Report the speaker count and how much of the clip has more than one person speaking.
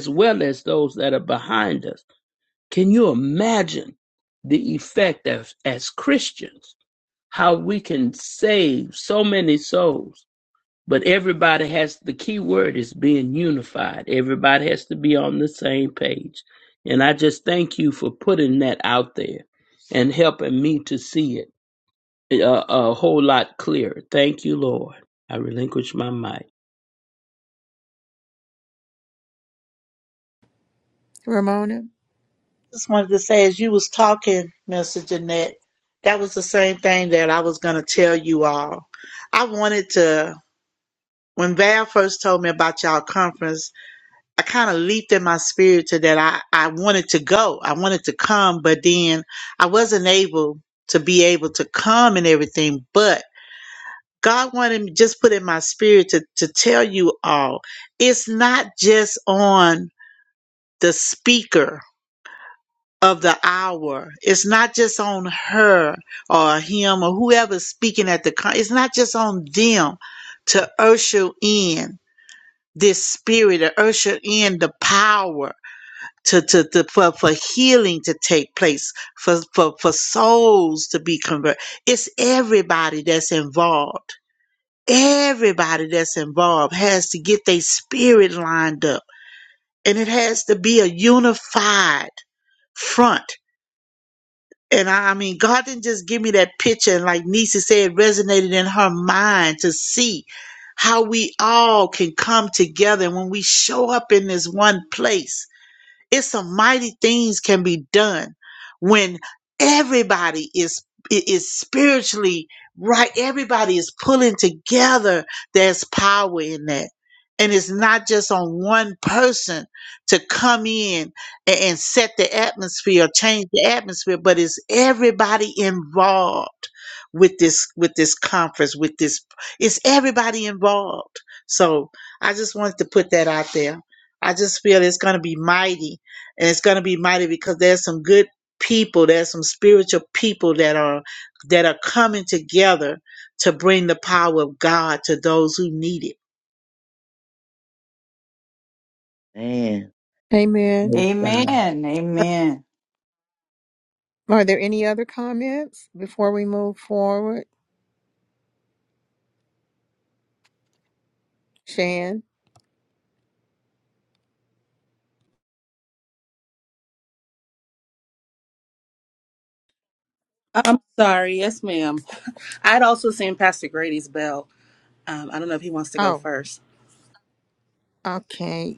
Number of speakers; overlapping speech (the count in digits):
6, about 1%